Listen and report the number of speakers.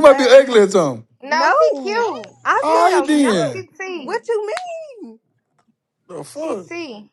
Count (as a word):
three